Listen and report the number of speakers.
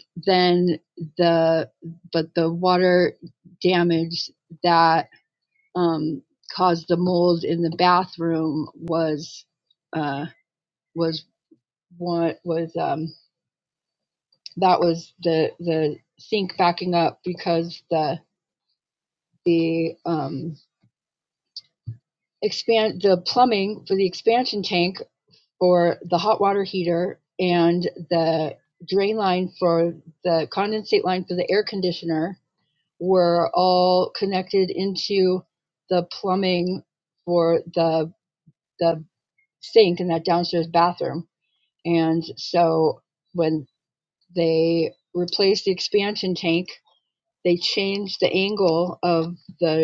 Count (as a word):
one